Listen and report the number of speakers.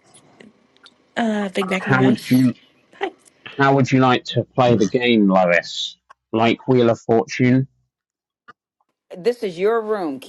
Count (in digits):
3